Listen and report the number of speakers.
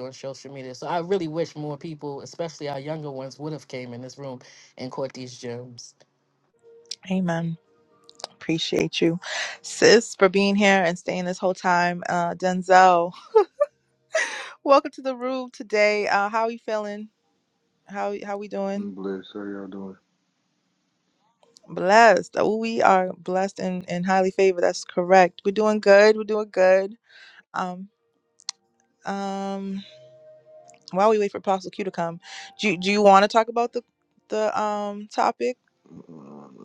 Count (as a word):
three